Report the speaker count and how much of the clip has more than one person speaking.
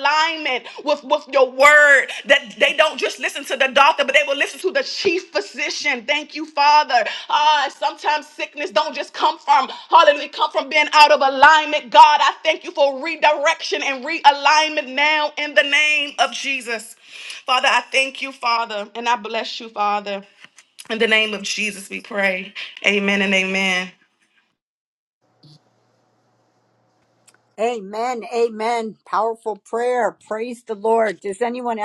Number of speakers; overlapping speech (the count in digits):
2, no overlap